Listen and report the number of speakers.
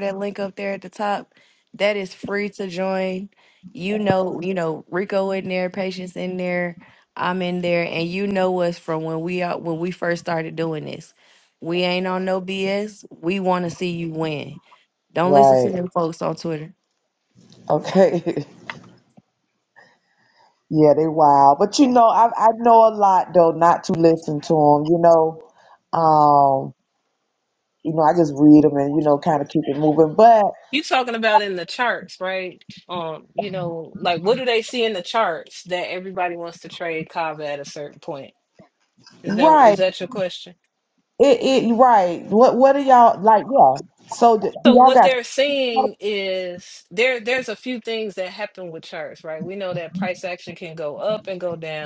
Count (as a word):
three